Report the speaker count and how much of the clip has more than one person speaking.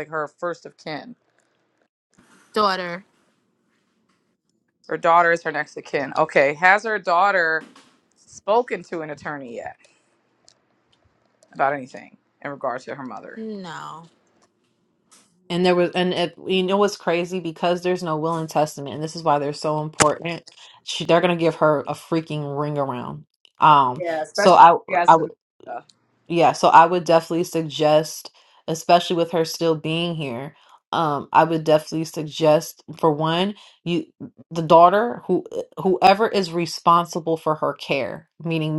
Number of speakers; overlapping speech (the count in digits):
3, about 2%